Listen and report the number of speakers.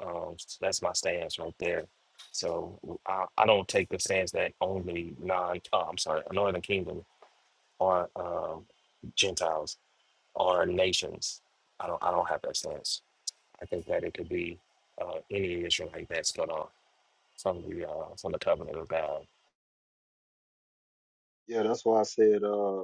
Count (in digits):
2